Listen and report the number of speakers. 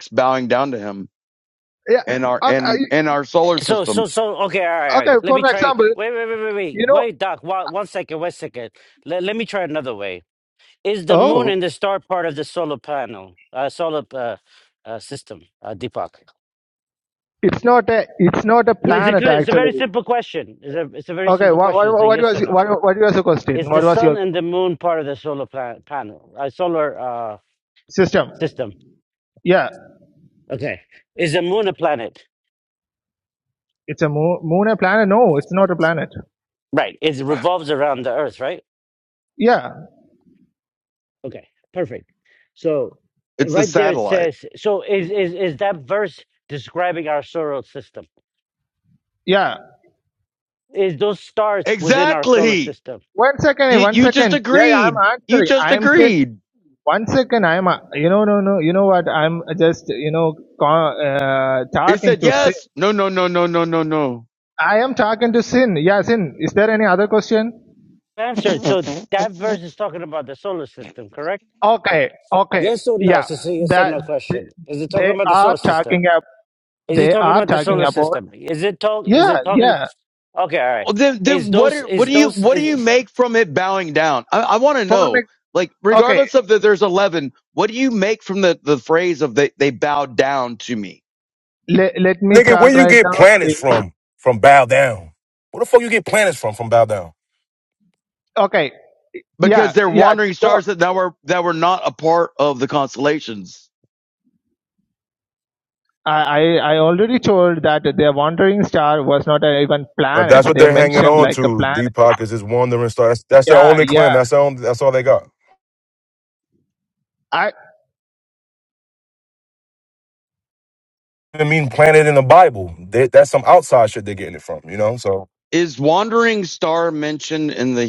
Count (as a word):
four